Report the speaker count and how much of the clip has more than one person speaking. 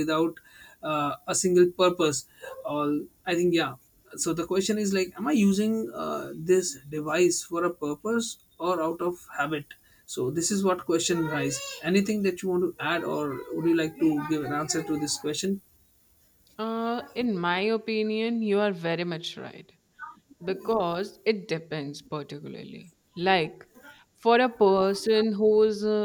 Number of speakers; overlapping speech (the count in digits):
2, no overlap